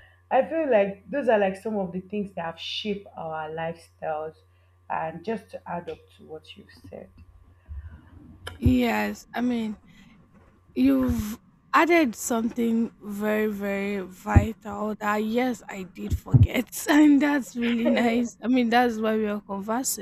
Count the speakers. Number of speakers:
2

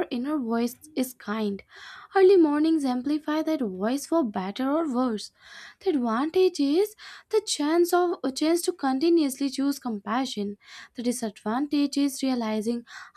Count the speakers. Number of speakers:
1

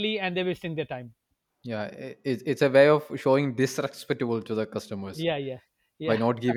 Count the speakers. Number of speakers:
2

